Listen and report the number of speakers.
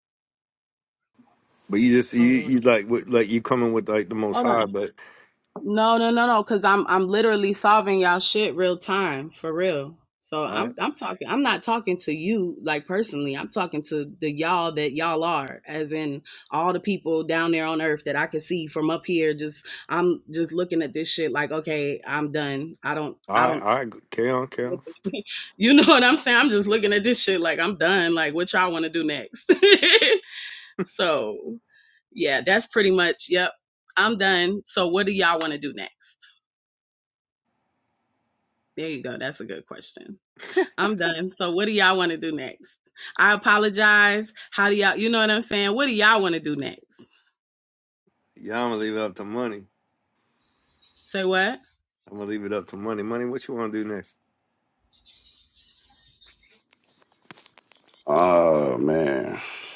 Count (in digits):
3